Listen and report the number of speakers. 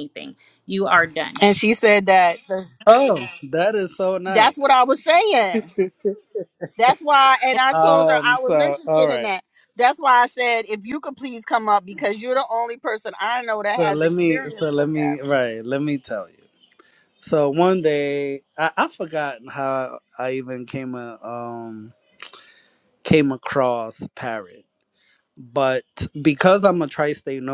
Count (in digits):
3